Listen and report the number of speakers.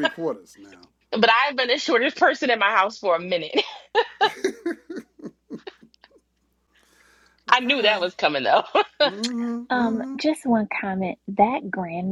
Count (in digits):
3